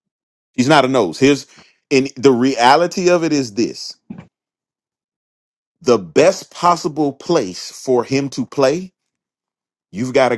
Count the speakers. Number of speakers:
1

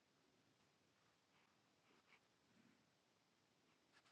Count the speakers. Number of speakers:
0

